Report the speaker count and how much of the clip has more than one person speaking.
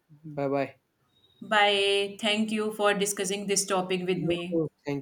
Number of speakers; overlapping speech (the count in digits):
2, about 8%